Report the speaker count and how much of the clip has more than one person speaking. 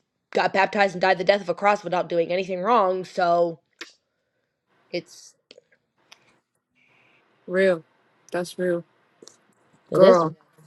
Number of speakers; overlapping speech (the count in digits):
2, about 3%